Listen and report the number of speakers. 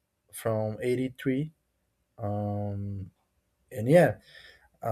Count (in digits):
1